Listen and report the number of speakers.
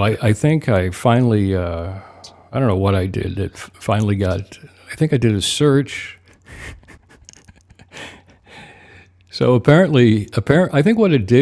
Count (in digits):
1